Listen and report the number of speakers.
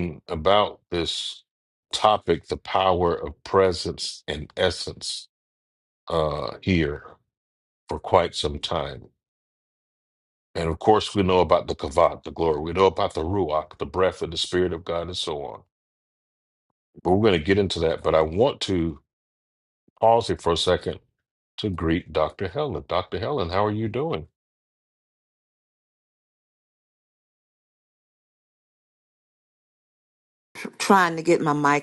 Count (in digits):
2